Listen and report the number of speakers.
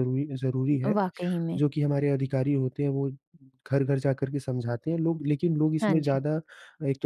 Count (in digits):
2